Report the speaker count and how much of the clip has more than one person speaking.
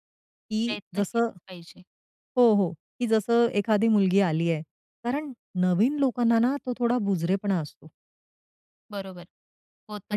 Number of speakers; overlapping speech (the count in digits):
2, about 7%